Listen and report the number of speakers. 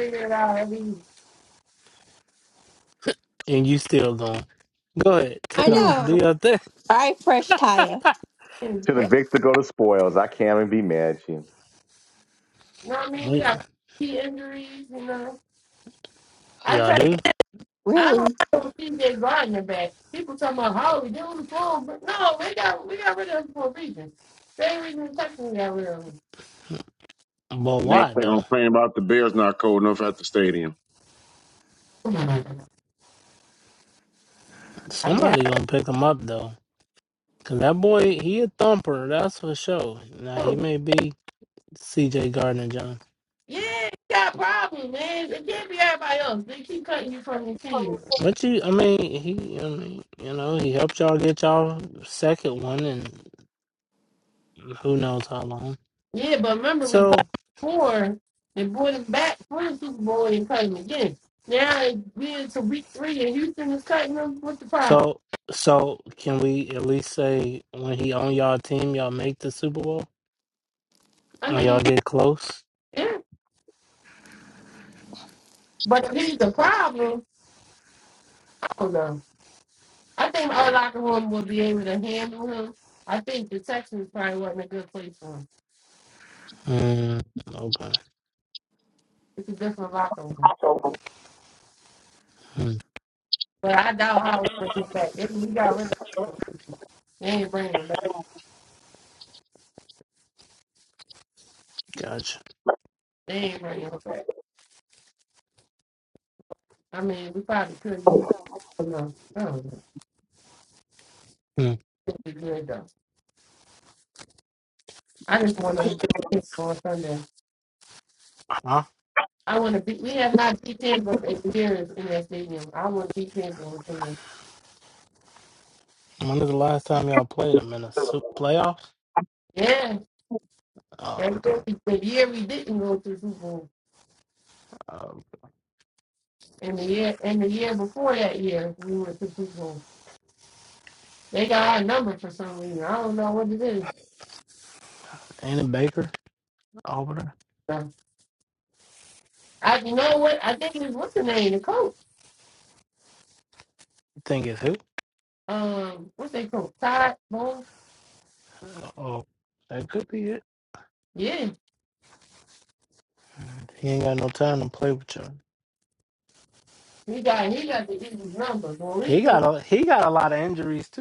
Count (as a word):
five